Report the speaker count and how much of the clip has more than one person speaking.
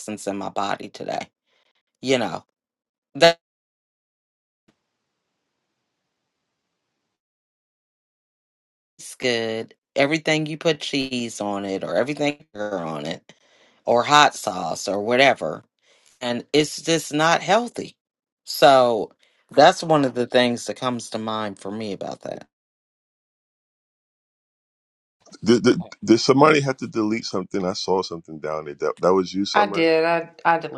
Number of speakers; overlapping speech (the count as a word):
three, about 1%